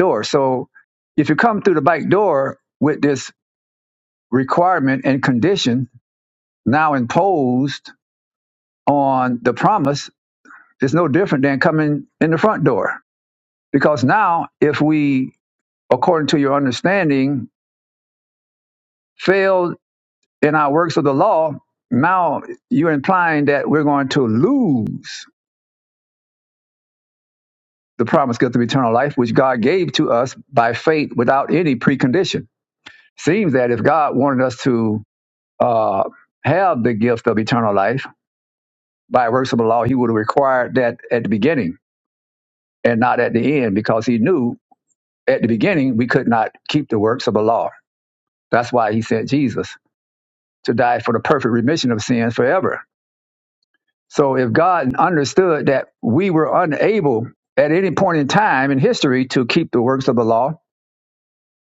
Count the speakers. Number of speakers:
one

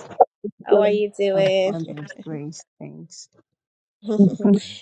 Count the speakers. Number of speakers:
two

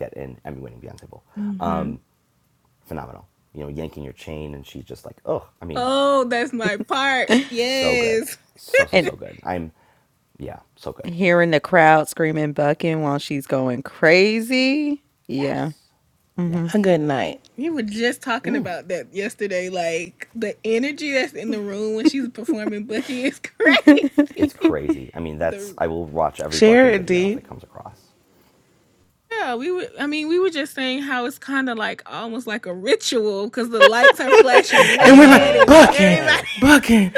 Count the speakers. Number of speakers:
four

